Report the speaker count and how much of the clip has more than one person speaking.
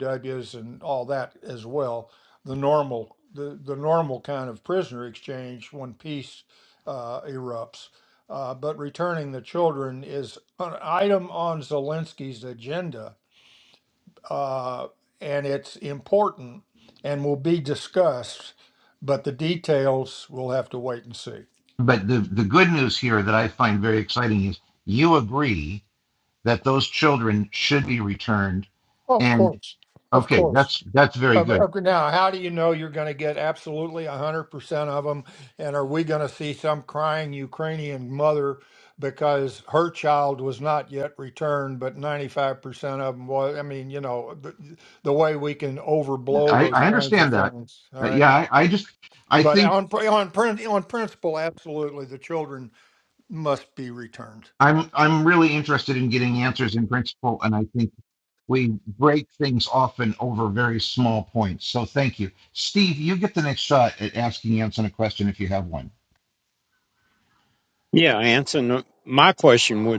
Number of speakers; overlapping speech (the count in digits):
3, about 4%